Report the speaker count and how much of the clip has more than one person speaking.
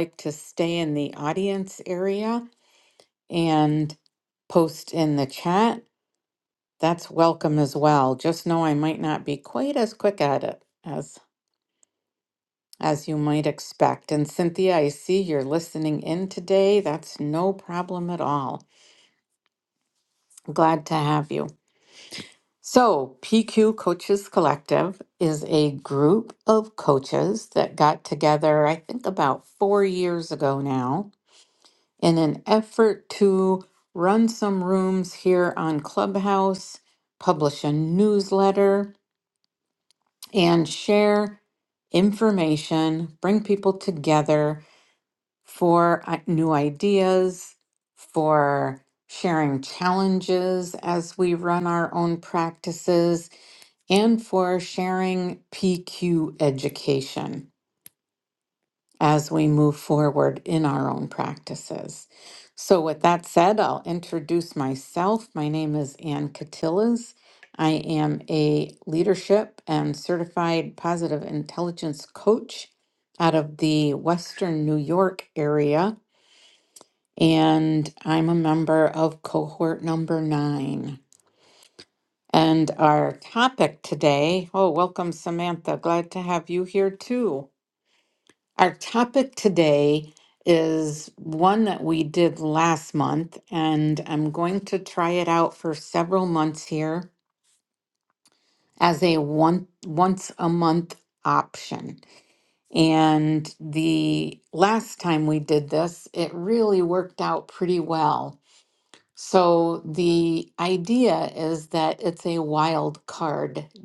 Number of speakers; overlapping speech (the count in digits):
1, no overlap